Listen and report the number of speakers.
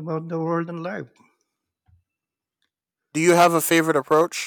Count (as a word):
two